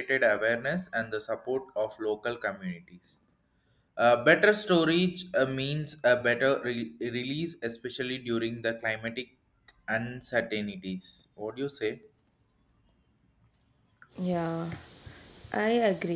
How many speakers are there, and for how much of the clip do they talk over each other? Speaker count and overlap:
2, no overlap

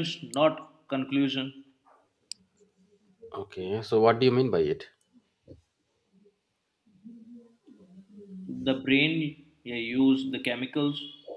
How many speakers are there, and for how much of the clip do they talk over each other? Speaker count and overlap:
2, no overlap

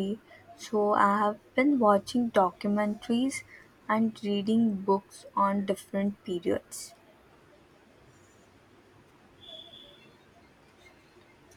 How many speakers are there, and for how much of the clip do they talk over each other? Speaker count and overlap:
1, no overlap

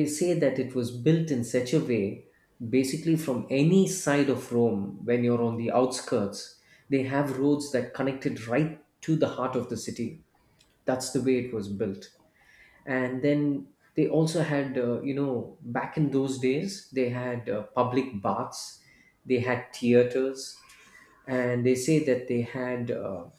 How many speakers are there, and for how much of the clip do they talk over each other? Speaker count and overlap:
1, no overlap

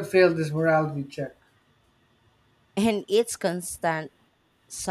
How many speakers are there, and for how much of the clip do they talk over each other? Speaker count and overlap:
2, no overlap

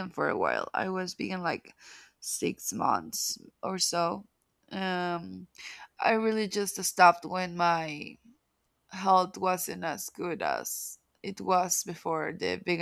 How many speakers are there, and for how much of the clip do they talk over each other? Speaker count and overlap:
1, no overlap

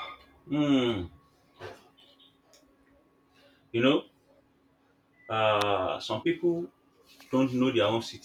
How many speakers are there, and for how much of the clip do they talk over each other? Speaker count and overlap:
1, no overlap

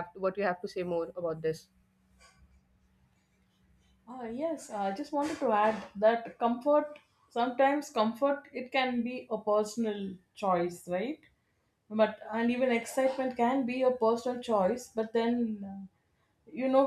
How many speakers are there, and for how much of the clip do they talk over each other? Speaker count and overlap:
2, no overlap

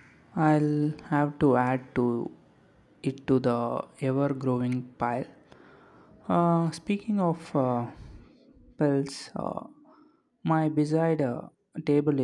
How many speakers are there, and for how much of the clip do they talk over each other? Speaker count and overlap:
1, no overlap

